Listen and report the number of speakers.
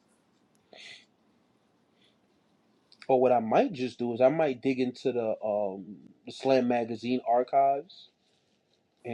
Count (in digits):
1